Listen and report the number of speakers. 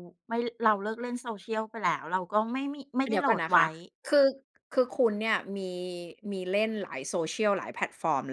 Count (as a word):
two